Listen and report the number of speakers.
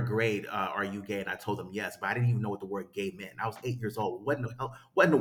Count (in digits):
1